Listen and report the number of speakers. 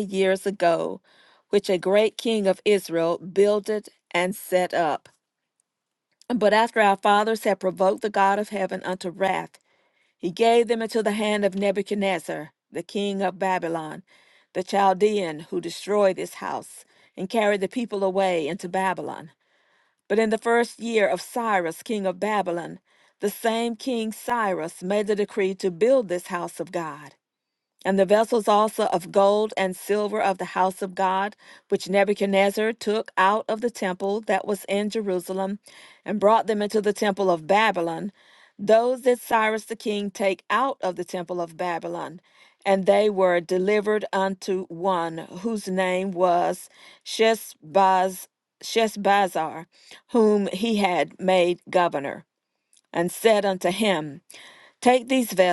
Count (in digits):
1